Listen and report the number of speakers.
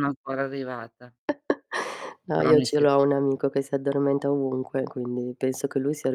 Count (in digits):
2